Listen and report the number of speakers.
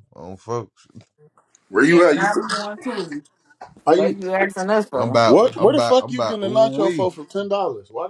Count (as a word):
four